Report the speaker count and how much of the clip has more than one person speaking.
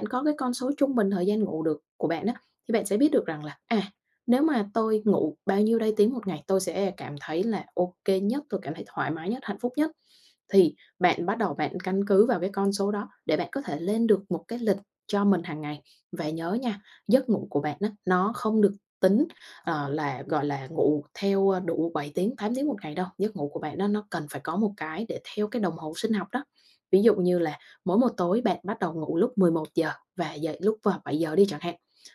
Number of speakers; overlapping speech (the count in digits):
1, no overlap